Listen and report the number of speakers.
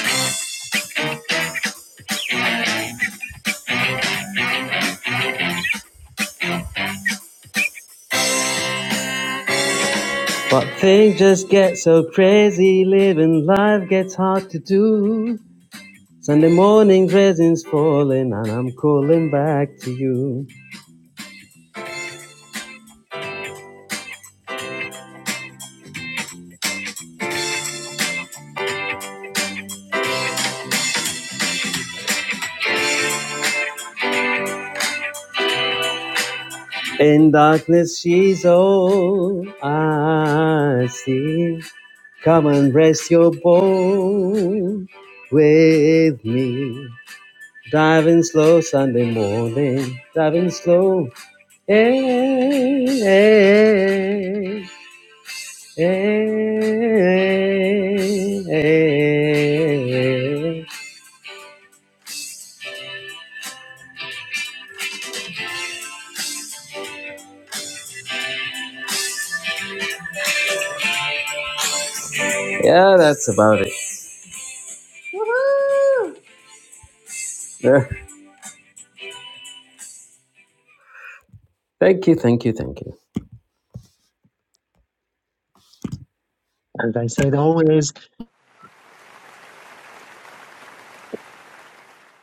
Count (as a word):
three